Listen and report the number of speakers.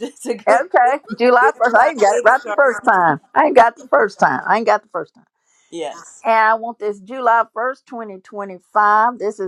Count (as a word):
two